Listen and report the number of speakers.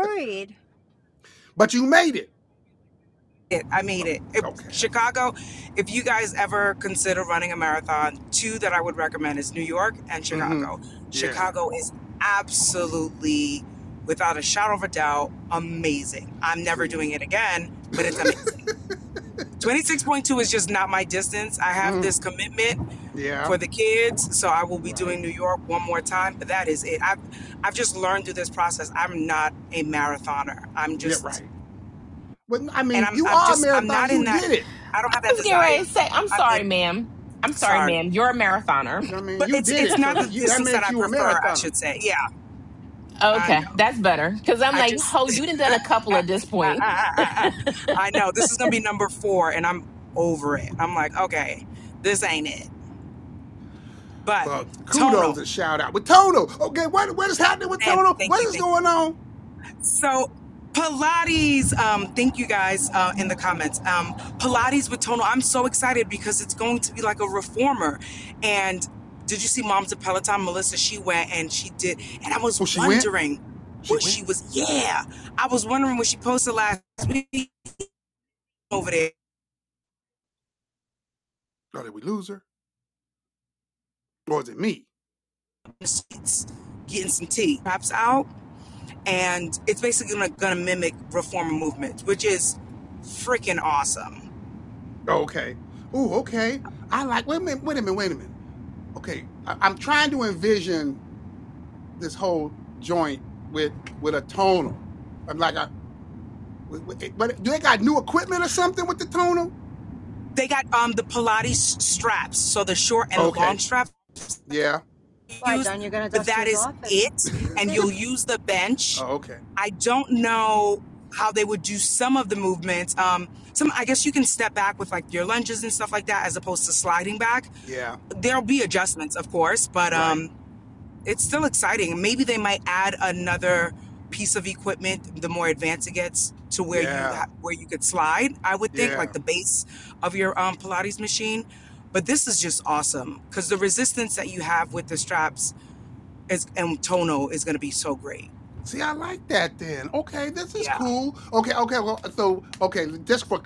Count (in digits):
4